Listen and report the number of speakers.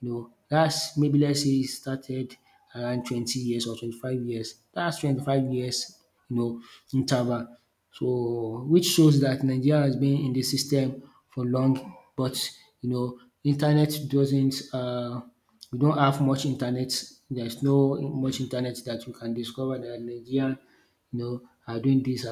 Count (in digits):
1